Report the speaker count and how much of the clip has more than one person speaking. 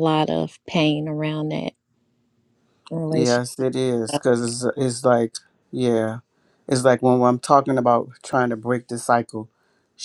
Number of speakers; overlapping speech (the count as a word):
two, about 3%